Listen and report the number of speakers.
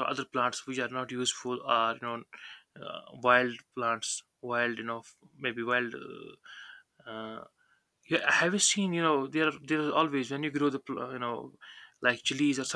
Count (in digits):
1